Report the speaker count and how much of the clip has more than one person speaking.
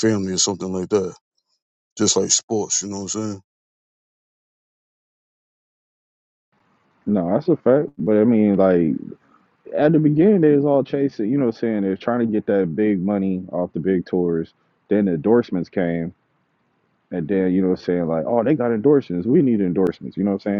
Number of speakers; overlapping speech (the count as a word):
two, no overlap